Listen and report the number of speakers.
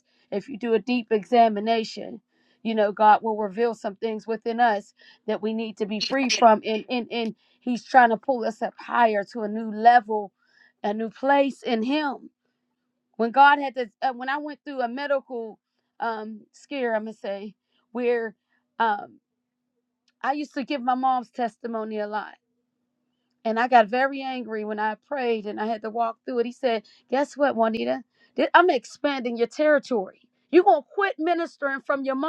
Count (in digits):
1